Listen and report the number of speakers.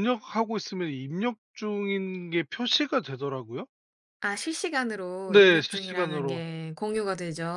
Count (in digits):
2